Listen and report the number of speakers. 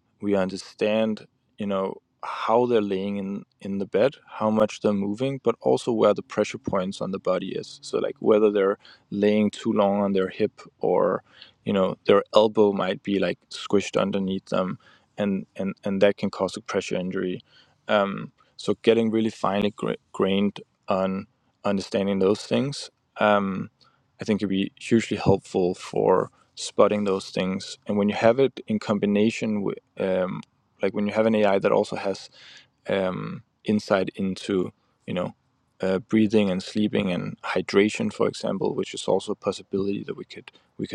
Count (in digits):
1